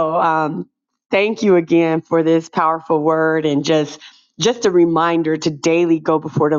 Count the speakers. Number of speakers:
1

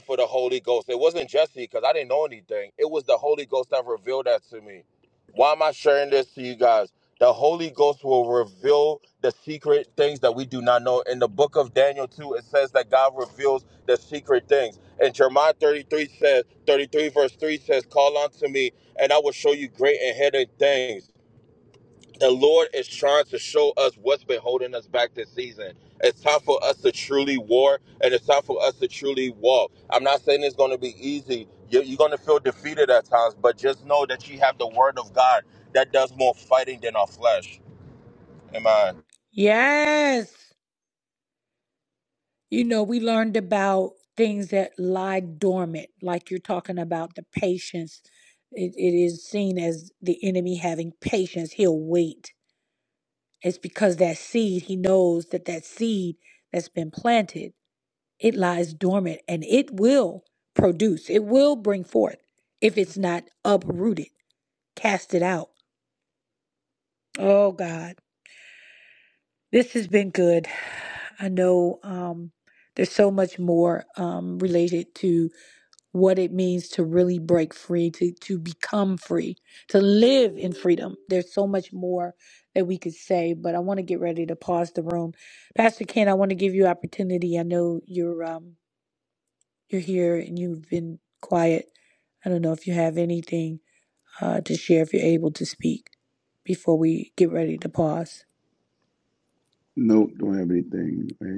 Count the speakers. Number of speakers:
3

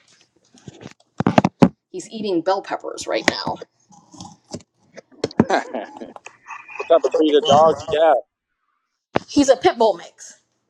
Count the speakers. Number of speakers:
2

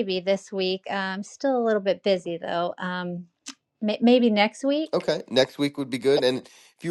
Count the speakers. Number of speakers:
2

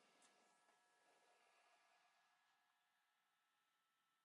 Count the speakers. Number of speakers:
0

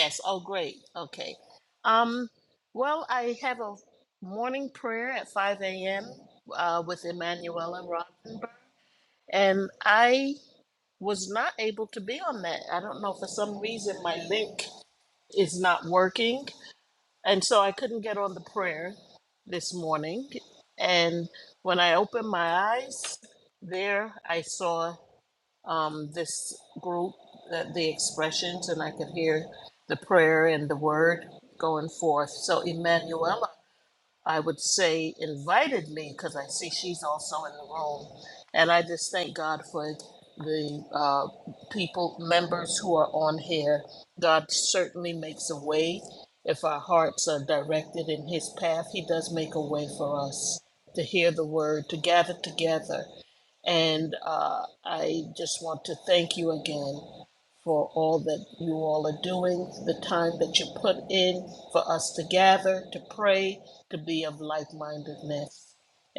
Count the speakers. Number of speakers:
1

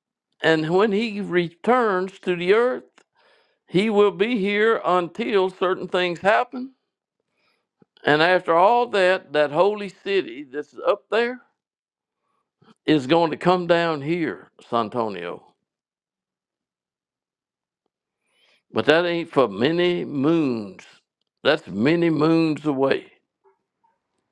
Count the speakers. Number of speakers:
1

